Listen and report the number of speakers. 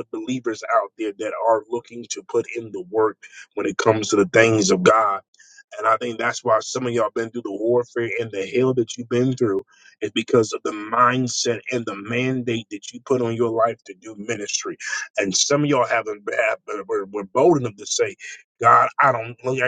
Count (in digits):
1